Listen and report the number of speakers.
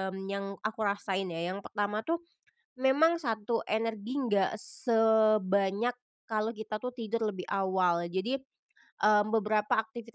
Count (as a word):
one